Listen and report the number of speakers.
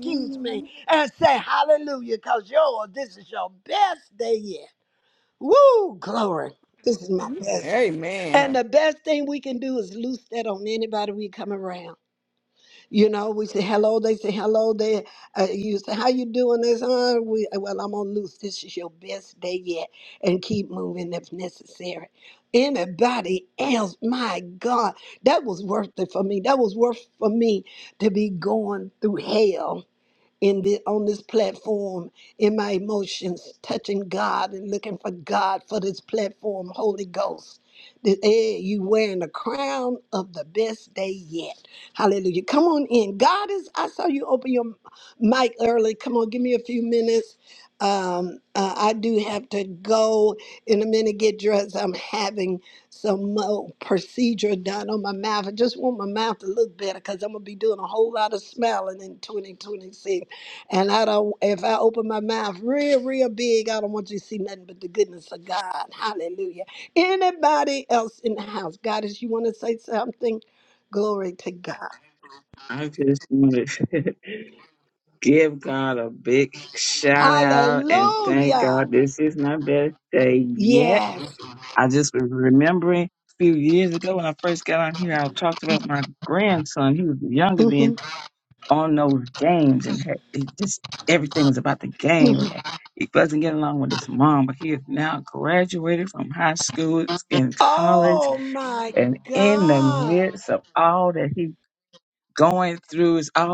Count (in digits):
3